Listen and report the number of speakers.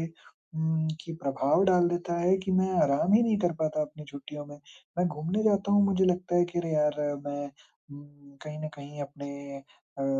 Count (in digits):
1